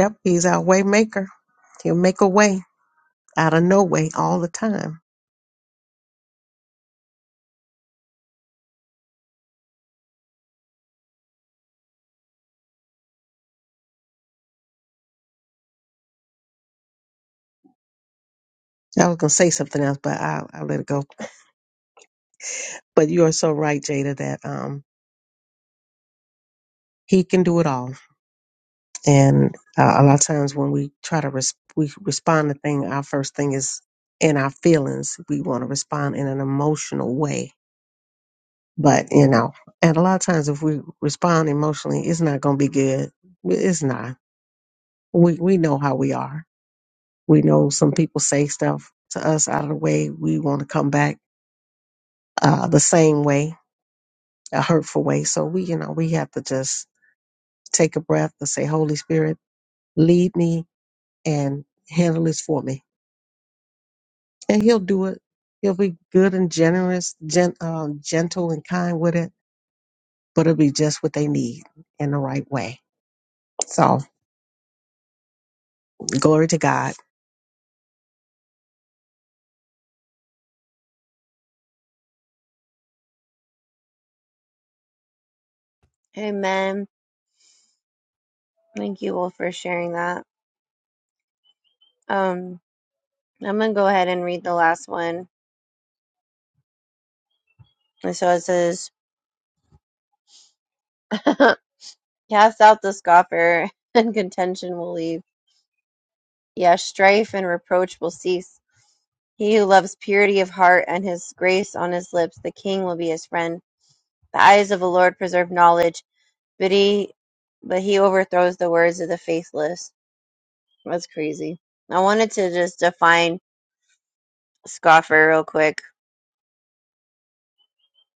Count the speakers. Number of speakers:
two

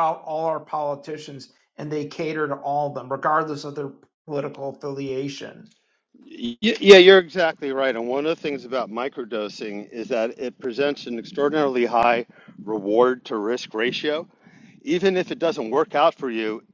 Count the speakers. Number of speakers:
two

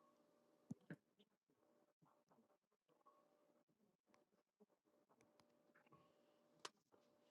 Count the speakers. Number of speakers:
zero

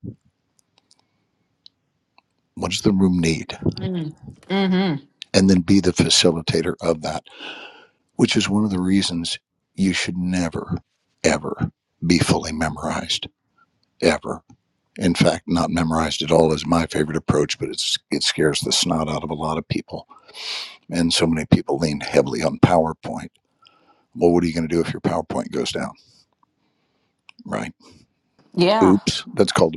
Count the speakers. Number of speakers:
two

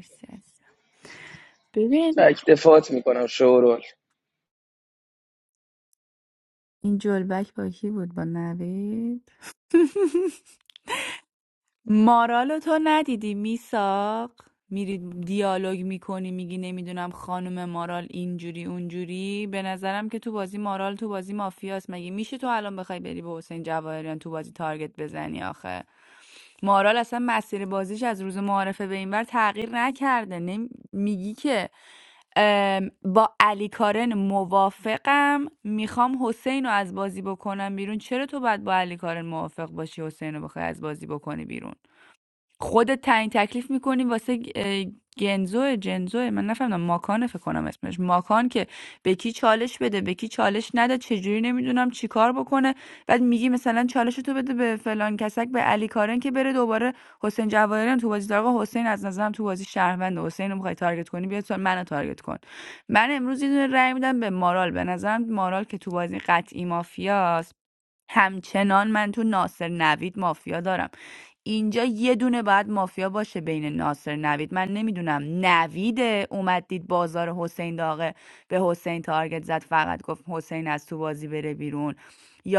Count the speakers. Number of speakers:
two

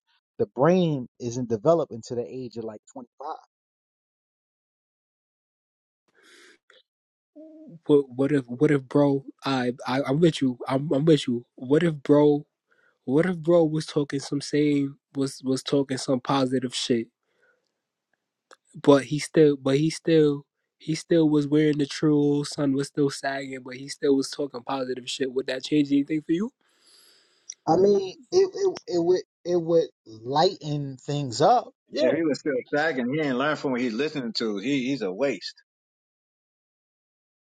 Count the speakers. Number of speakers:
three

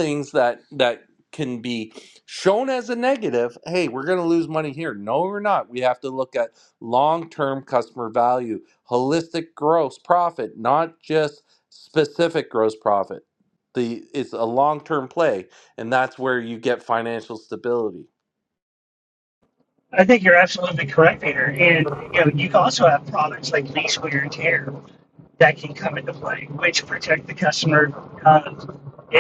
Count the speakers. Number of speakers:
two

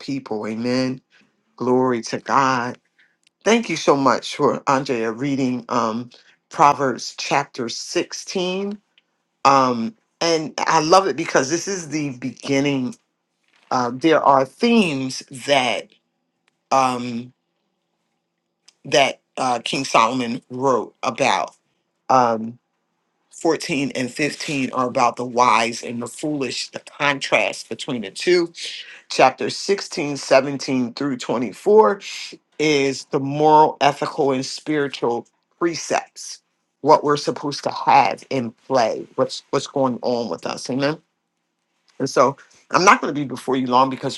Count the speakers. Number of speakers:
one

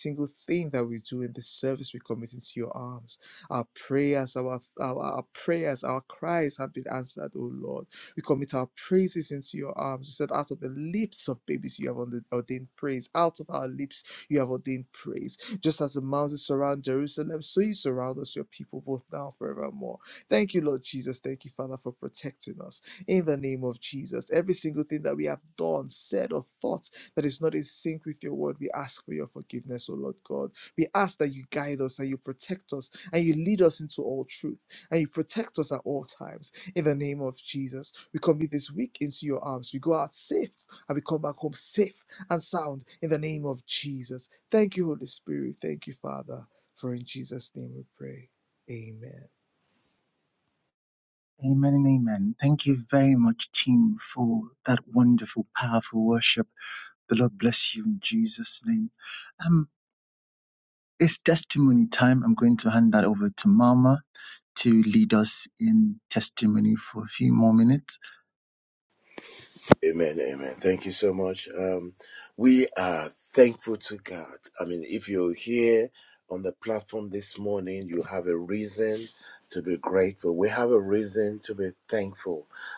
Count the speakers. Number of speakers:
three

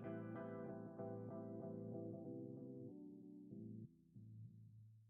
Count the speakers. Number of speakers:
zero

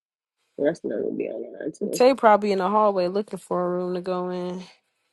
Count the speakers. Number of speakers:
two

